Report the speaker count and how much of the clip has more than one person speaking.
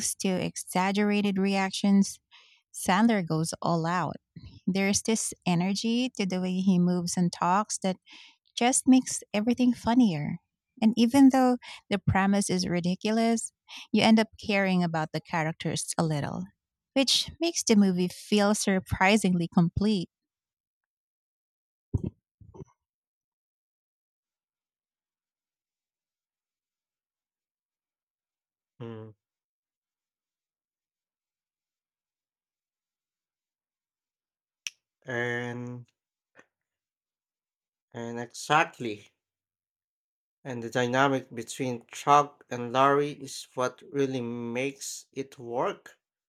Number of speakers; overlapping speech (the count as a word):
two, no overlap